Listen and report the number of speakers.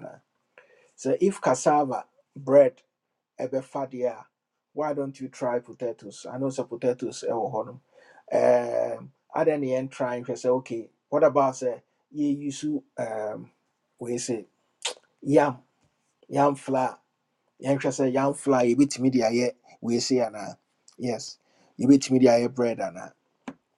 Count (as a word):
one